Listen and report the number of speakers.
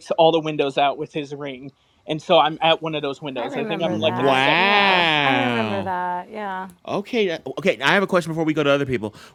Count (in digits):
3